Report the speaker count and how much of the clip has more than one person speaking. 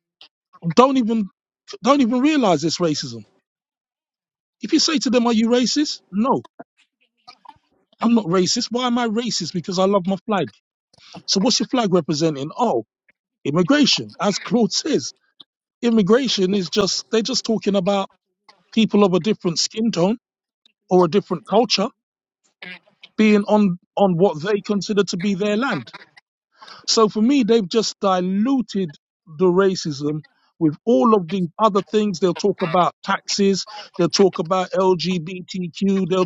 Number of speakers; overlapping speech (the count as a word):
one, no overlap